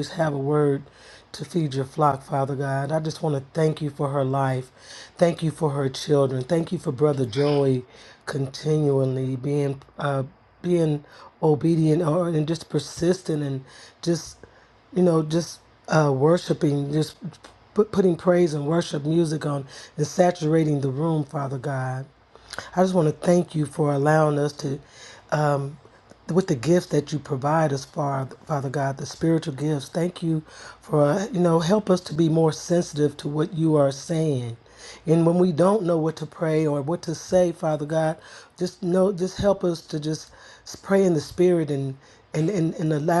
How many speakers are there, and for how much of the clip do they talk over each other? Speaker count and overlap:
one, no overlap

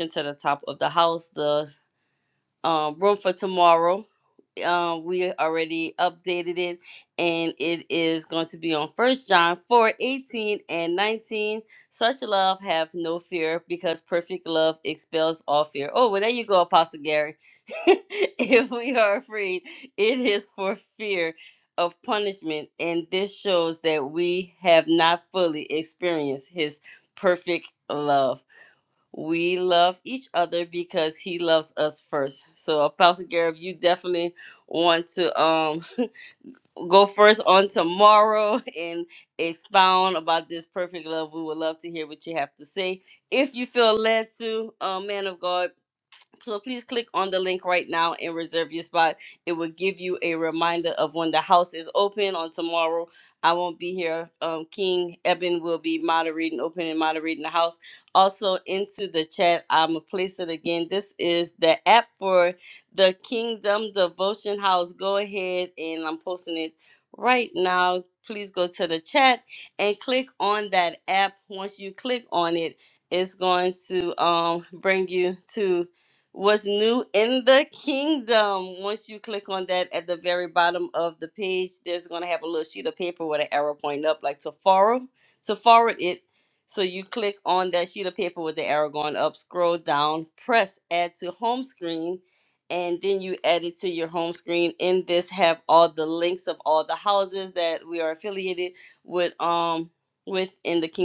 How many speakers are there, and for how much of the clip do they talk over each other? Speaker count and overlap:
one, no overlap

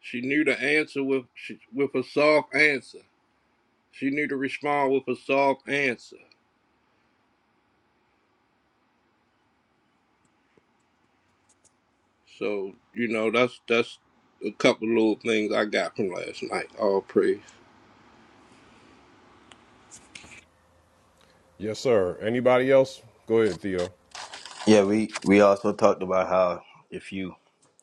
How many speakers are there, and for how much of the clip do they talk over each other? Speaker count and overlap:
three, no overlap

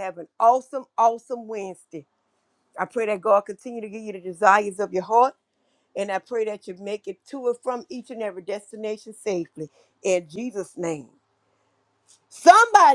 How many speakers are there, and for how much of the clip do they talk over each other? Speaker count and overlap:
one, no overlap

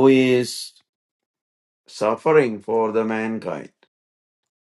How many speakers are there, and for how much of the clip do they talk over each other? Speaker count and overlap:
one, no overlap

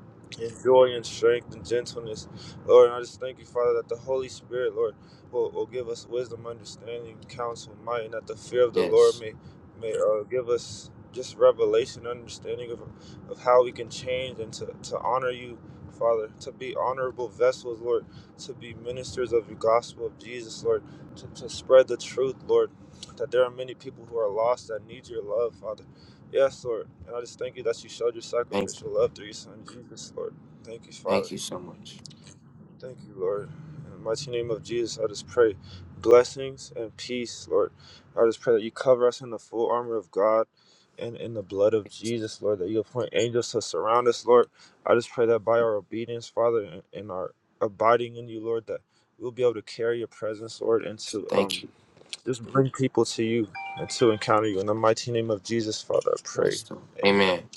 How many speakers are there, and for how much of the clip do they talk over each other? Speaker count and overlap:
two, about 3%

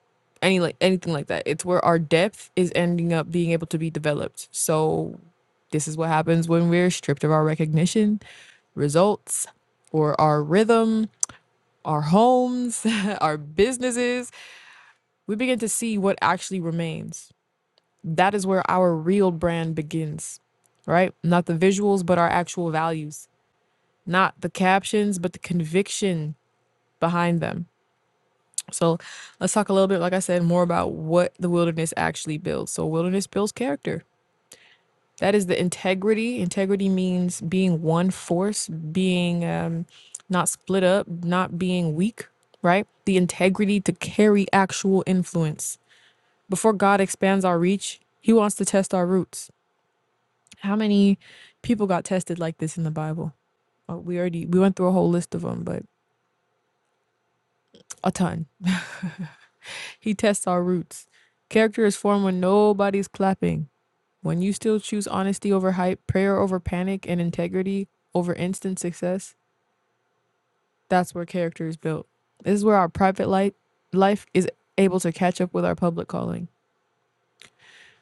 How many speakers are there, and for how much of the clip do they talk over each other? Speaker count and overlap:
one, no overlap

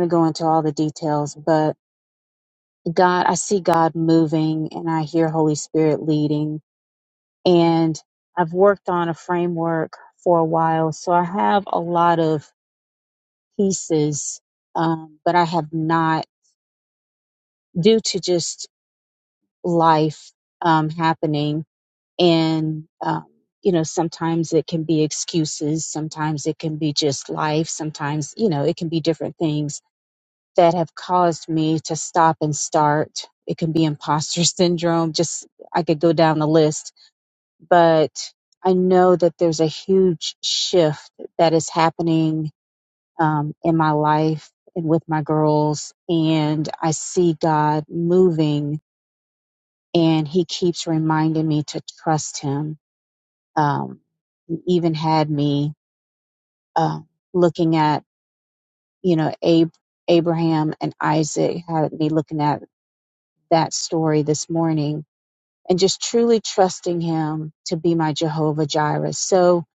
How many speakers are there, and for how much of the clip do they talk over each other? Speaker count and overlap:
one, no overlap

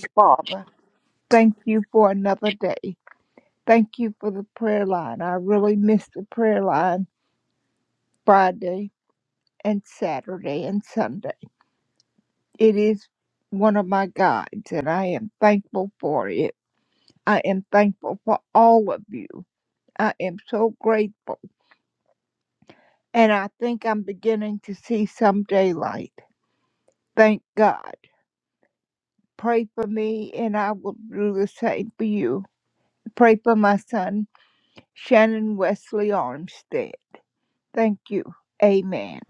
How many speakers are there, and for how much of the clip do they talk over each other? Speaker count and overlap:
one, no overlap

